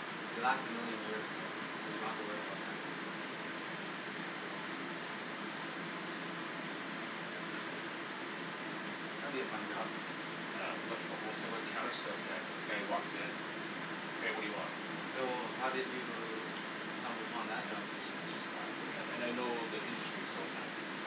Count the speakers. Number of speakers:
2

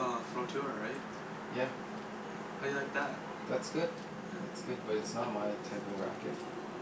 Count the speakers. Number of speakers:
2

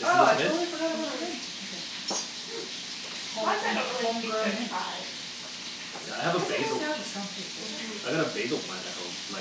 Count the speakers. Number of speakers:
3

